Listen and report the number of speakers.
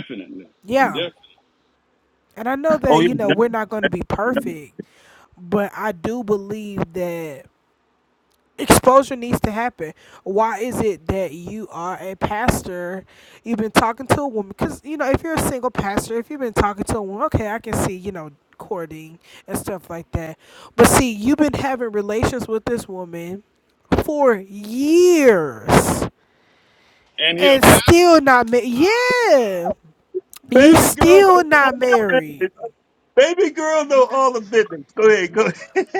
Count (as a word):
three